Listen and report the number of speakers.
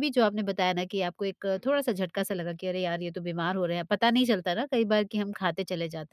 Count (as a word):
one